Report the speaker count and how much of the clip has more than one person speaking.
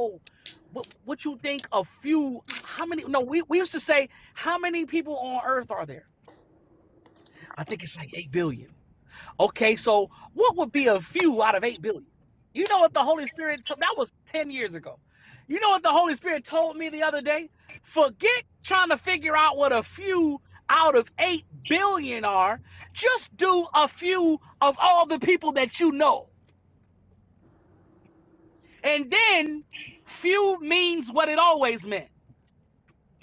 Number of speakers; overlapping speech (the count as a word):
one, no overlap